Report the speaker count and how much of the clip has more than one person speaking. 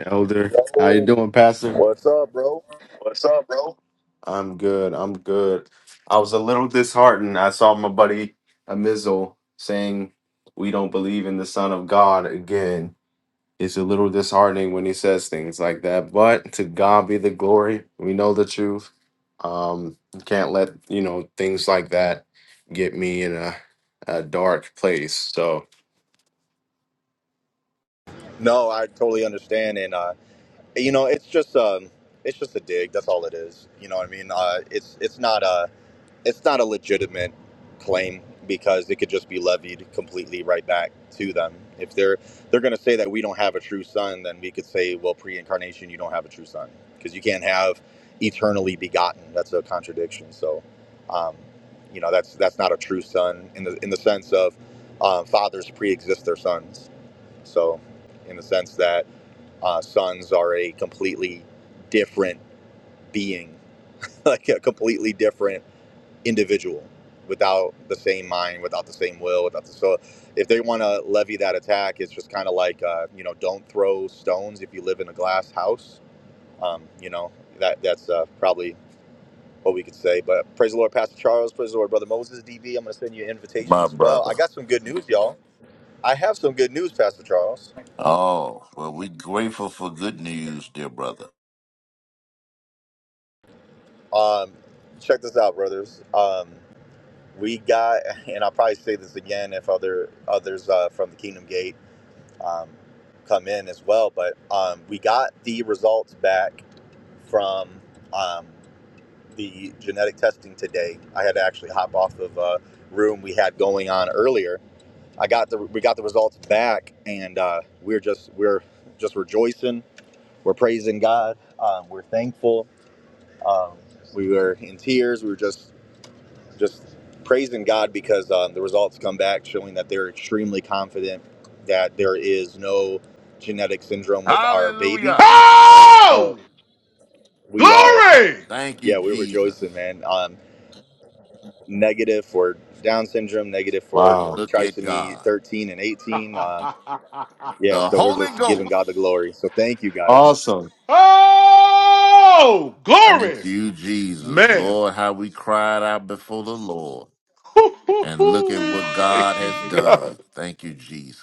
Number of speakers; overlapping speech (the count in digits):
4, about 6%